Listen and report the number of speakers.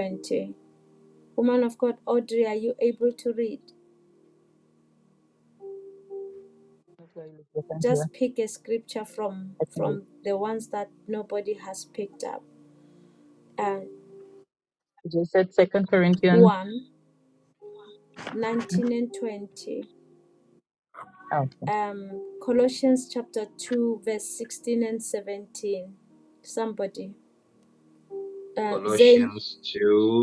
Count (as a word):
three